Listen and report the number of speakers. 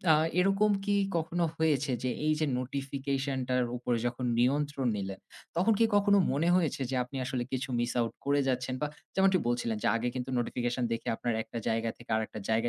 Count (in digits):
1